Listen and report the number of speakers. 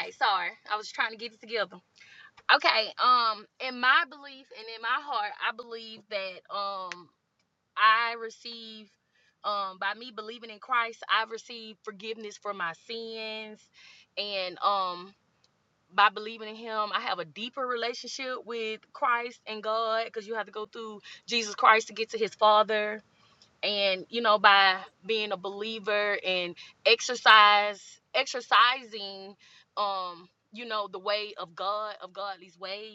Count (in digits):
1